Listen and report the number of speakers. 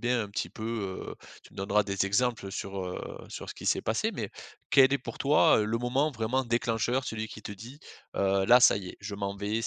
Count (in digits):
1